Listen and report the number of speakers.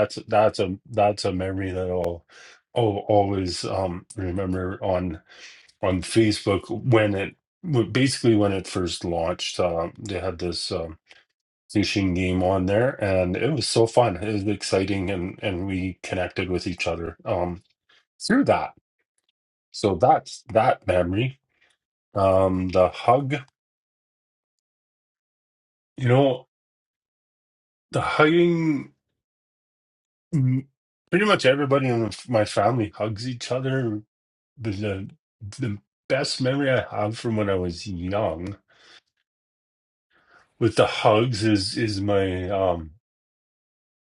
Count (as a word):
one